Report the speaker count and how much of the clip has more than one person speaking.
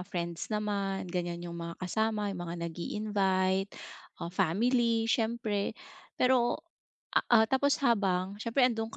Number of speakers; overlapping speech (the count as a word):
one, no overlap